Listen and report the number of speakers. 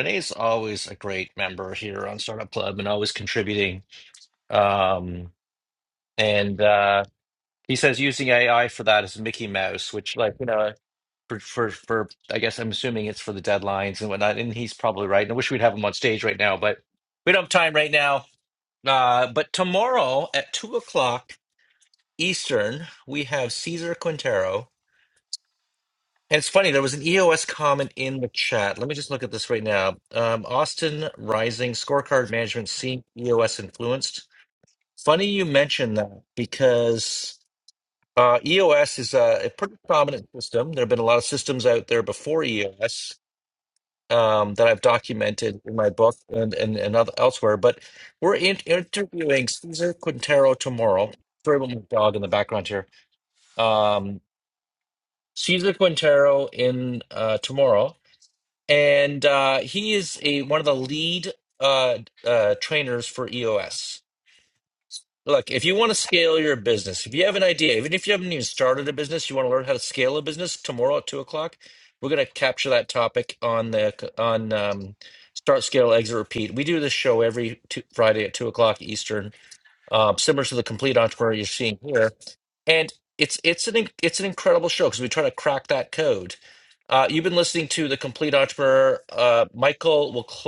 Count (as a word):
one